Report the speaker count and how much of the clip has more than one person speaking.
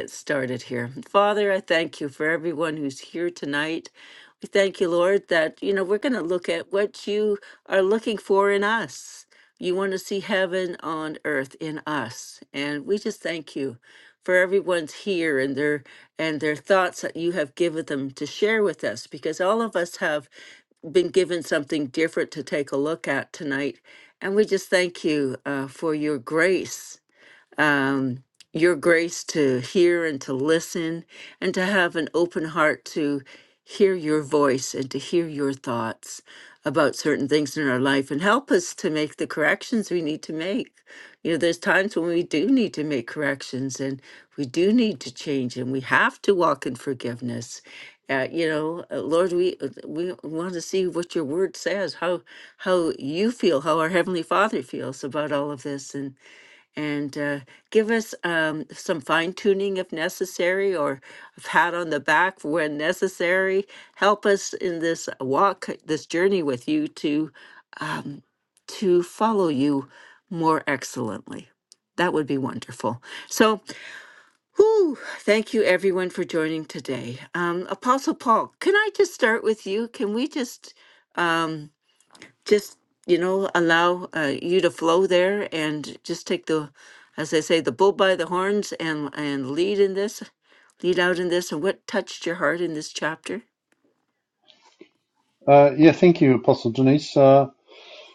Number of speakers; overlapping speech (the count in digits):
2, no overlap